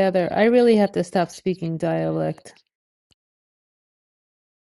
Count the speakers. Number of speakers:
1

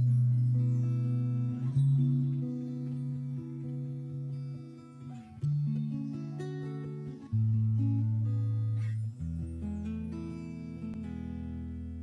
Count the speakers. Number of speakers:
0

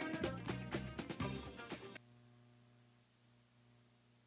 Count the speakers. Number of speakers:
0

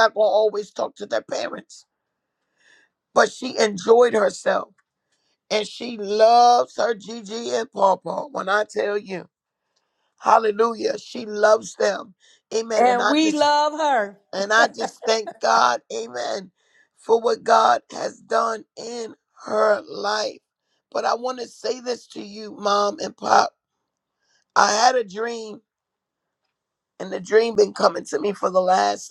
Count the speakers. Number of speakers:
2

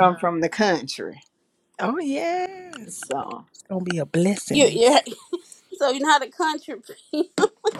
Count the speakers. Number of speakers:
3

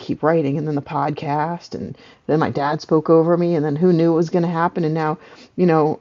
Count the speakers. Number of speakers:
1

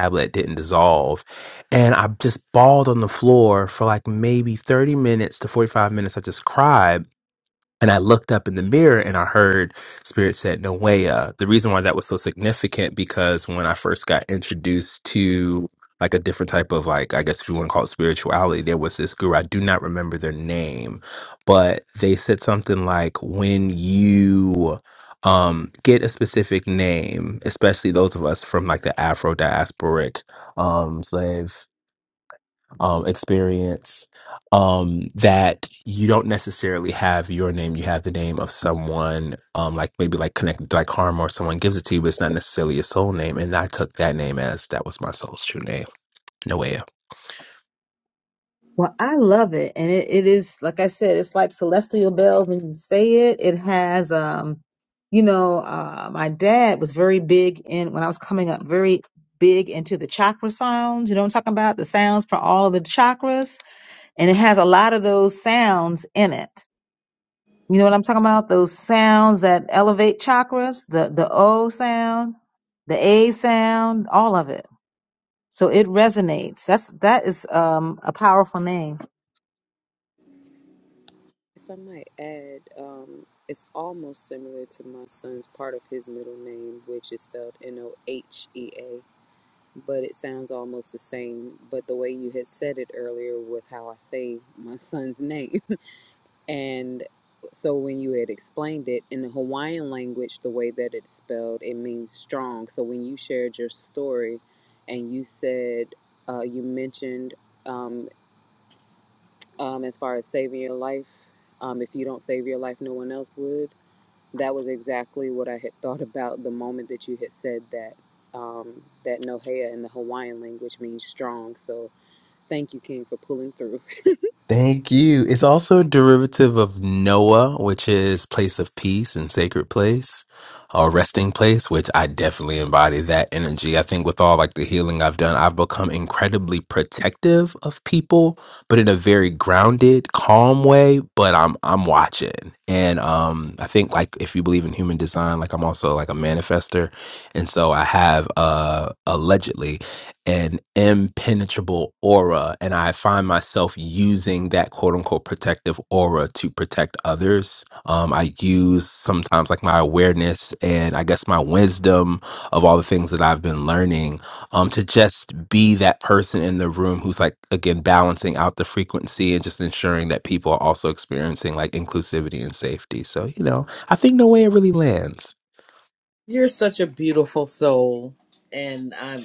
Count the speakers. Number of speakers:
4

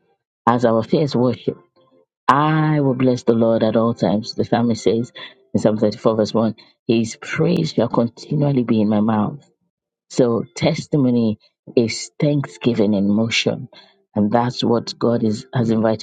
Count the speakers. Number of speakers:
1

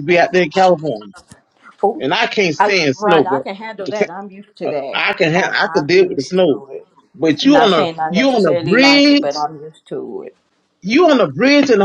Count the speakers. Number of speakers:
2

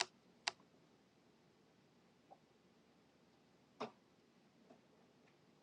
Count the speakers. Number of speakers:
0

